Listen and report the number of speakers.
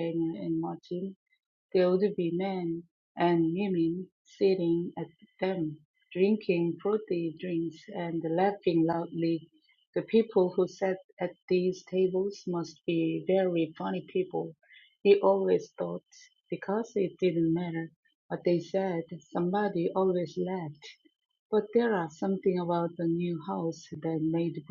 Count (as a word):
one